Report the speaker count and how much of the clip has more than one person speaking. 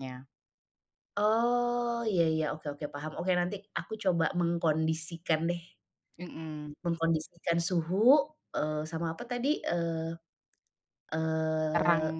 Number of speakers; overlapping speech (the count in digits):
2, about 3%